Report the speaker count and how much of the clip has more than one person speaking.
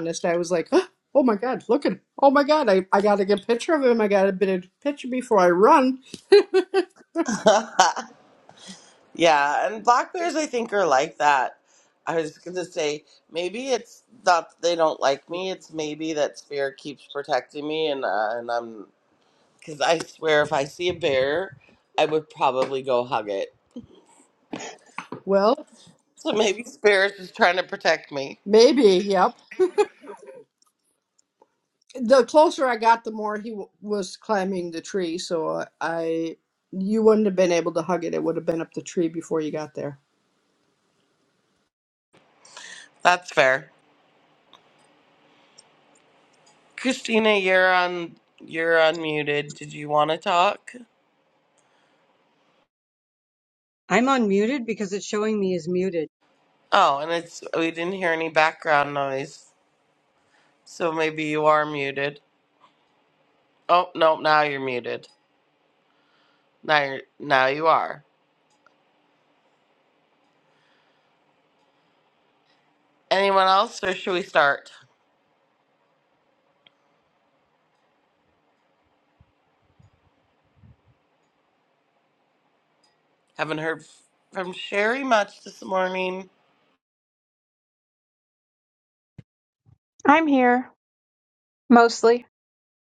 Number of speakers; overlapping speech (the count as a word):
four, no overlap